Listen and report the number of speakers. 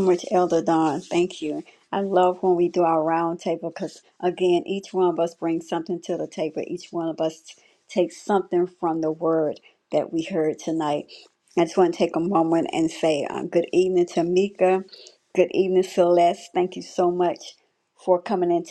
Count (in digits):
1